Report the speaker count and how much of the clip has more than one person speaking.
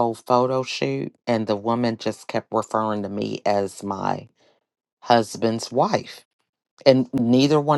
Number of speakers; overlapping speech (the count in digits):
1, no overlap